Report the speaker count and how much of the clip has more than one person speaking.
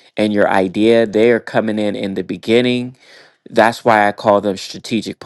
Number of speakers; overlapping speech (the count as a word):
one, no overlap